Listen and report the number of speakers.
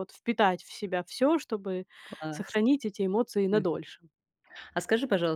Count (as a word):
two